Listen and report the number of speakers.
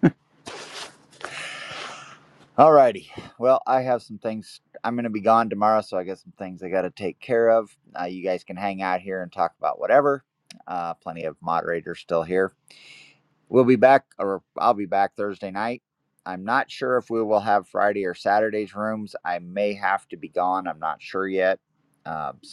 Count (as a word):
one